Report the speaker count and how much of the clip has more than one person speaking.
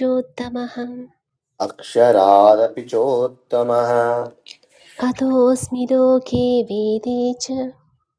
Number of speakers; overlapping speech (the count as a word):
two, no overlap